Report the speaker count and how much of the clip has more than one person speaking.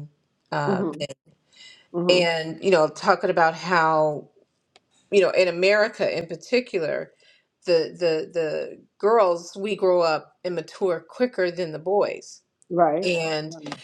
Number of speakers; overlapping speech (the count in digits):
2, about 4%